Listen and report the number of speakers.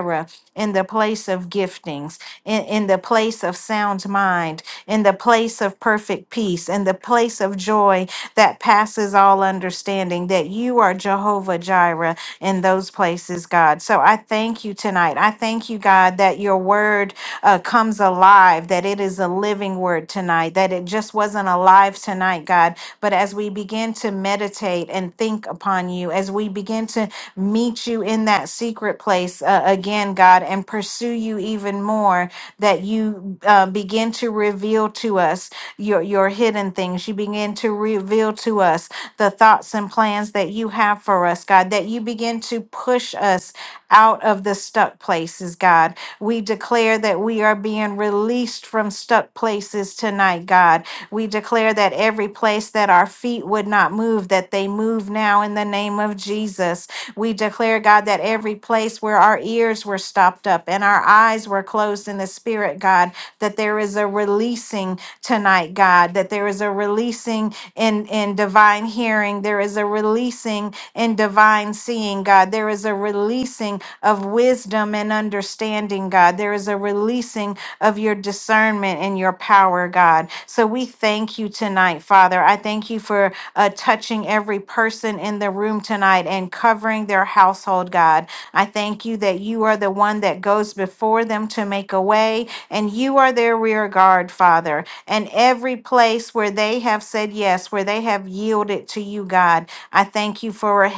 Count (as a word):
one